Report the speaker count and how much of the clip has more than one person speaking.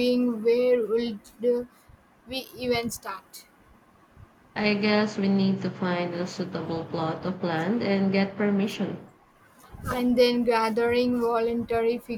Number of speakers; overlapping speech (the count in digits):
2, no overlap